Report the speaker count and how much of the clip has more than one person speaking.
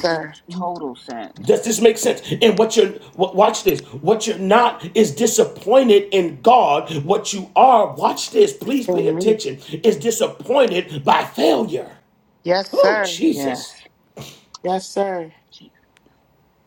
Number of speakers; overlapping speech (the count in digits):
3, about 8%